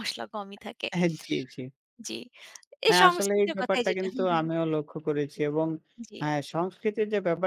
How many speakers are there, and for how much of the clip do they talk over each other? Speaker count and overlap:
2, about 22%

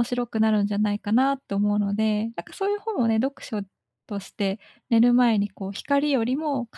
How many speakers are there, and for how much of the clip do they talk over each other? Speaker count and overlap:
1, no overlap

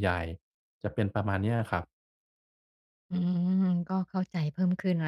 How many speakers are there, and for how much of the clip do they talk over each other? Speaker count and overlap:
2, no overlap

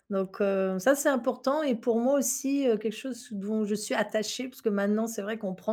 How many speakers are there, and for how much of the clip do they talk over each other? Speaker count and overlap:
1, no overlap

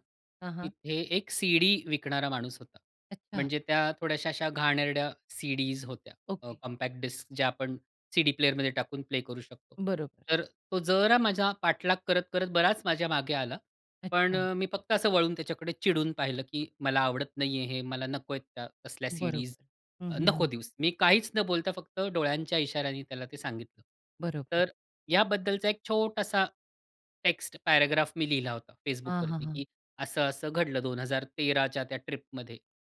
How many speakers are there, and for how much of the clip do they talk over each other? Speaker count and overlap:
2, about 5%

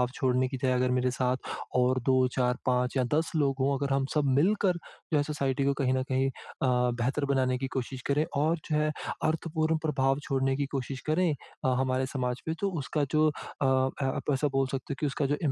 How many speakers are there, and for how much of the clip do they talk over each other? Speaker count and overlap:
1, no overlap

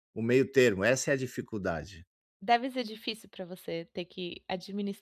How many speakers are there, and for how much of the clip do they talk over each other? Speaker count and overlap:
2, no overlap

